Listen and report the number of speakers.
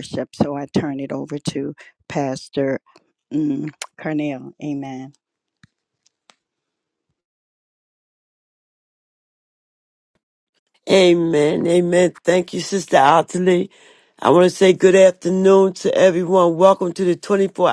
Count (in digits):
2